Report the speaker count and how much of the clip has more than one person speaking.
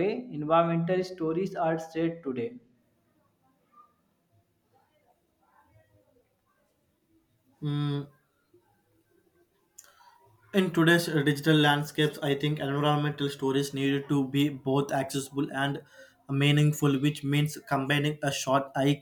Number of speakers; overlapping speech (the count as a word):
two, no overlap